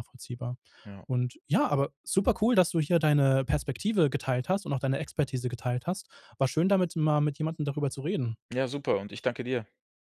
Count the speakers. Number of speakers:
2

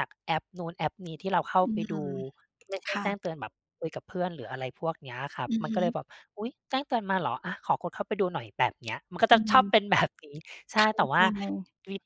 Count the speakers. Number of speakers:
2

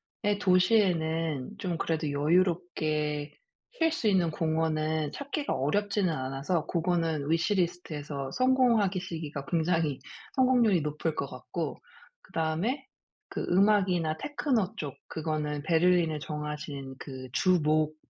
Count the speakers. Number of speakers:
1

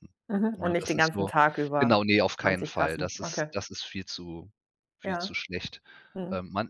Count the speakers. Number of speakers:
2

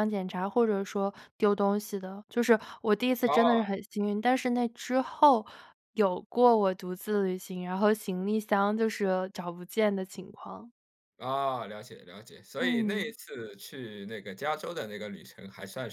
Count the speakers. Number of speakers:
2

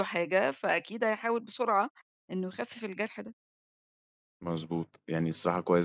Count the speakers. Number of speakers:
2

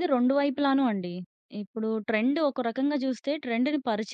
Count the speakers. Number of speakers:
1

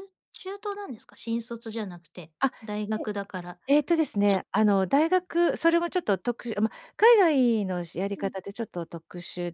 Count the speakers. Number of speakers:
2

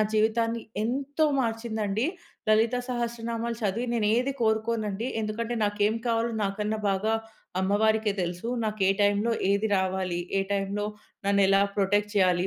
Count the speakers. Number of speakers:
1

